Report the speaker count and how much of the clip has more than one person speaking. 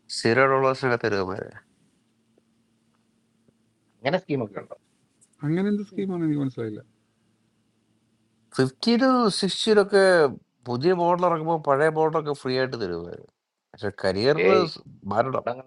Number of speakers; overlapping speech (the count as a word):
three, about 2%